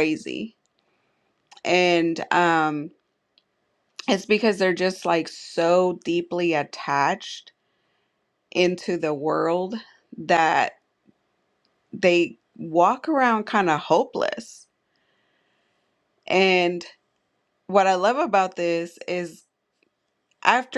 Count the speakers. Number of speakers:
1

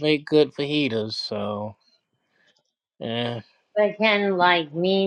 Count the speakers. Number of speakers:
2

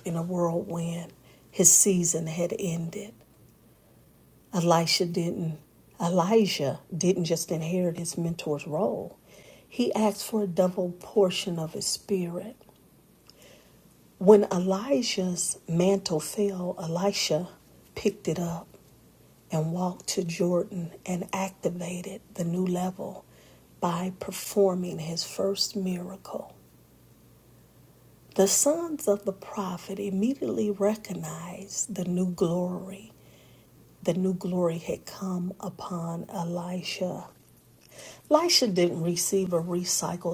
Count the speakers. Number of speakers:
1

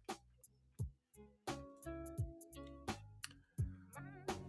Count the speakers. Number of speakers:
0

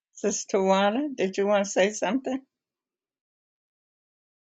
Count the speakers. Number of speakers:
1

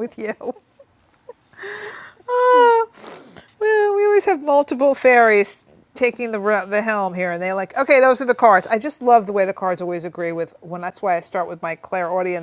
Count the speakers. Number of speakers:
1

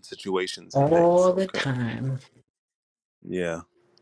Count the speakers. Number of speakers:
2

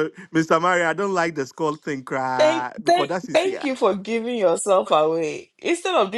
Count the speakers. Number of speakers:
2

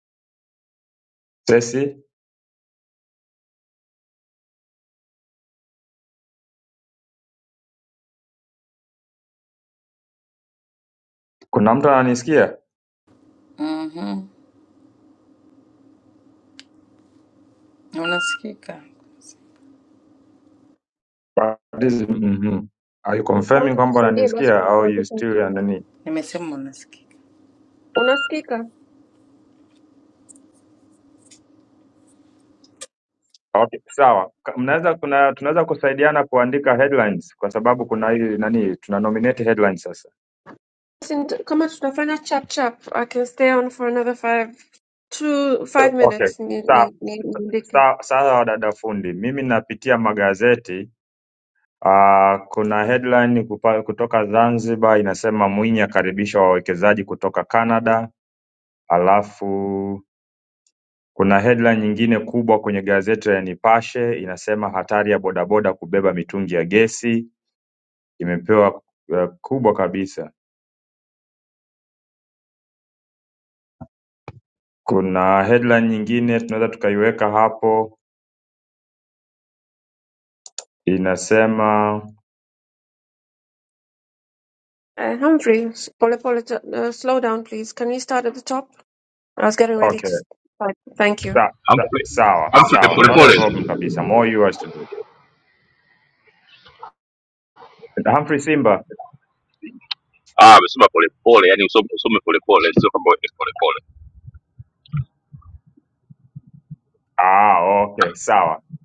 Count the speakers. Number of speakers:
4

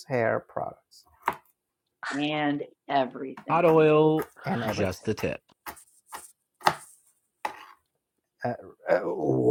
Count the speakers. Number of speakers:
3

